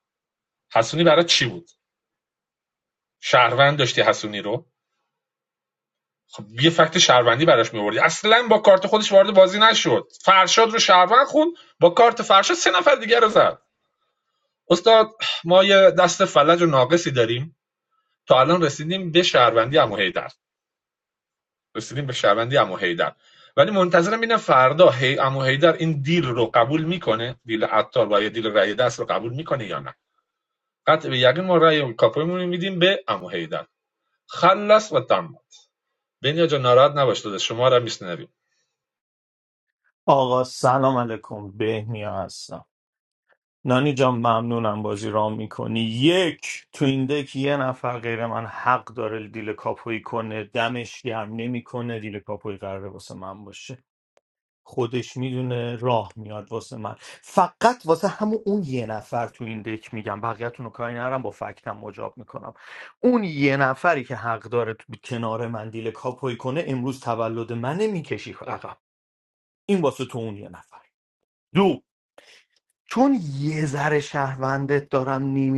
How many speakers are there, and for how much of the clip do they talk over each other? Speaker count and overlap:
2, no overlap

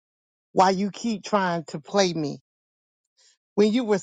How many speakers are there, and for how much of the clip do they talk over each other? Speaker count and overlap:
1, no overlap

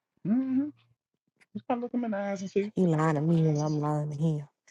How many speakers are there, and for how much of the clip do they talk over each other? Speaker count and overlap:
2, no overlap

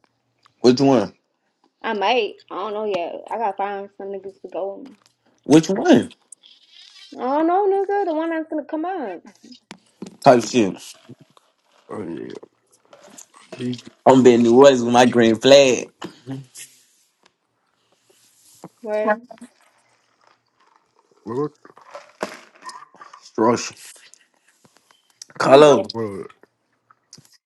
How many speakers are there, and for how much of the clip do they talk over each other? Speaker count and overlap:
3, about 1%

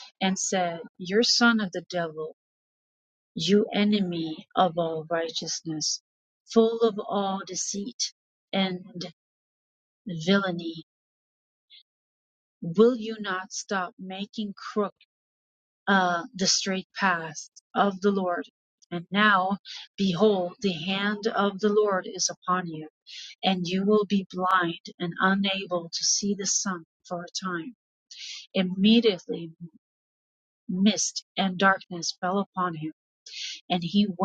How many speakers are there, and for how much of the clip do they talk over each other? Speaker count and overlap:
1, no overlap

